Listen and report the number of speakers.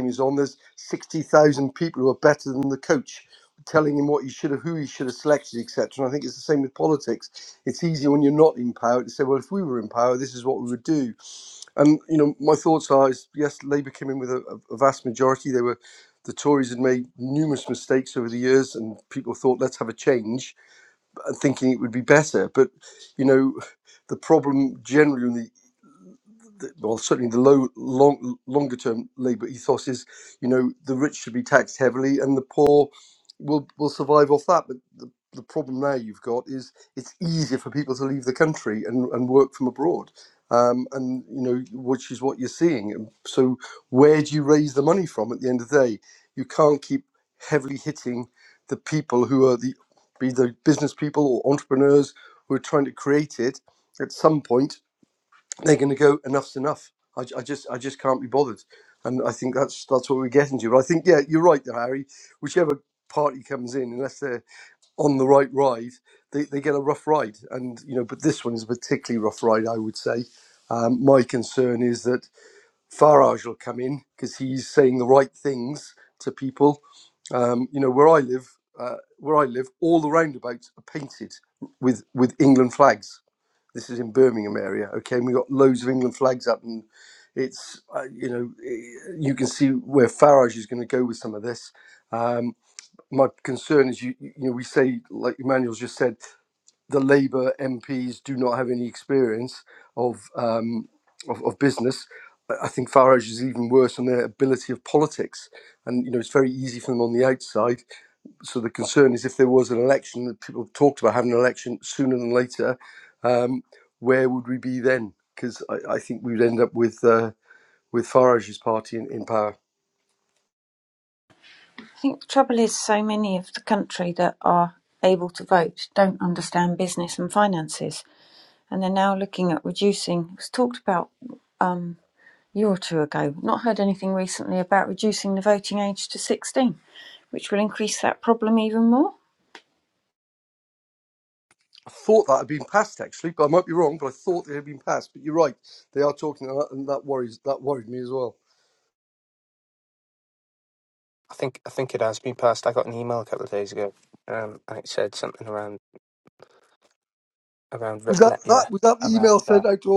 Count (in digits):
3